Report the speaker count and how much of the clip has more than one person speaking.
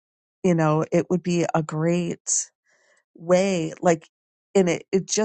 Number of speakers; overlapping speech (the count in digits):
1, no overlap